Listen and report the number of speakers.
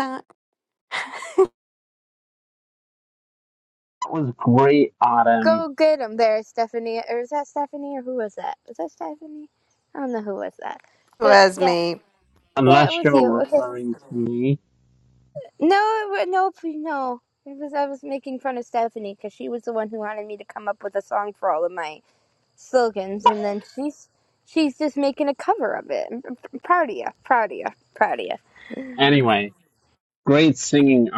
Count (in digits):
3